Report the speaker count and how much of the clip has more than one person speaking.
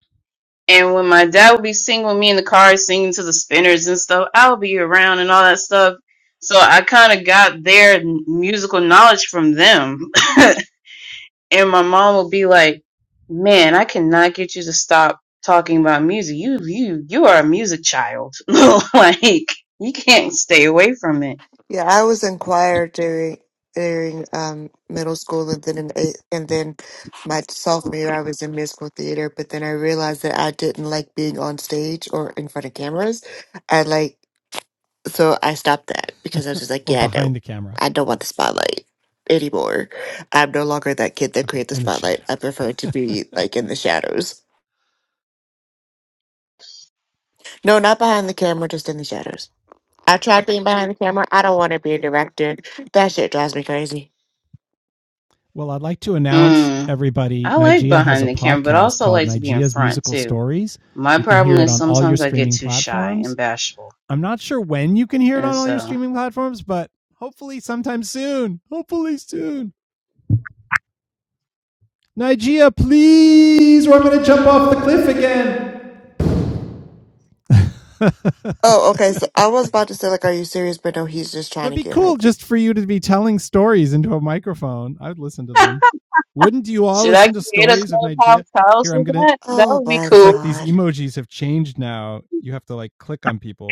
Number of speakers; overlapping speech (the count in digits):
3, about 12%